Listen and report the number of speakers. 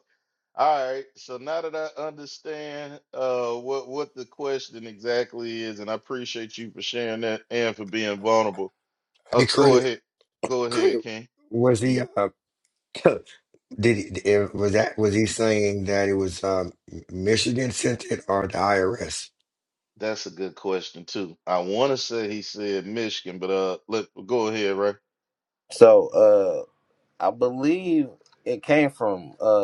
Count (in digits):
3